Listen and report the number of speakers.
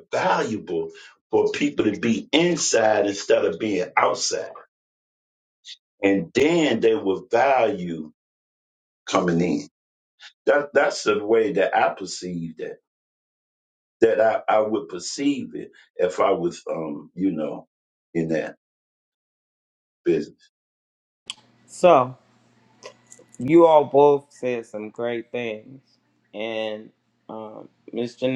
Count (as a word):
two